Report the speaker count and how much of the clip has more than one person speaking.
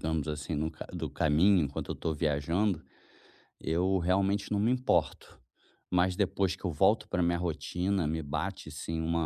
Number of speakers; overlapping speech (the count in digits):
1, no overlap